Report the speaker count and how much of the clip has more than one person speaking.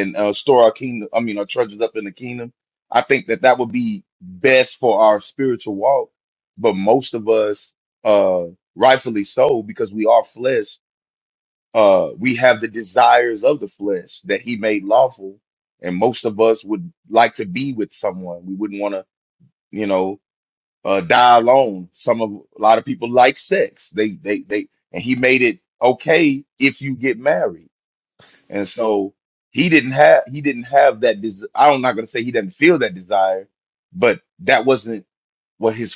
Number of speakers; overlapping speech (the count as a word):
one, no overlap